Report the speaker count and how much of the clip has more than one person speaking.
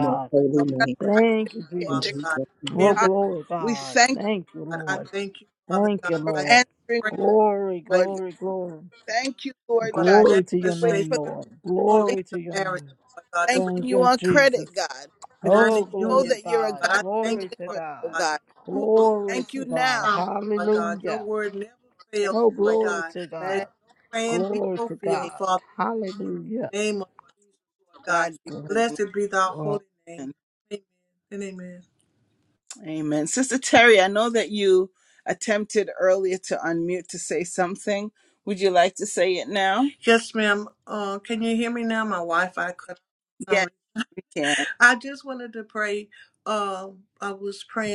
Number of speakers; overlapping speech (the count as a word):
four, about 32%